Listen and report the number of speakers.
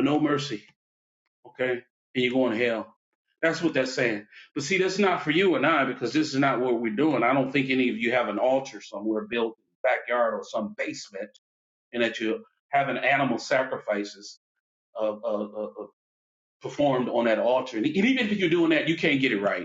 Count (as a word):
one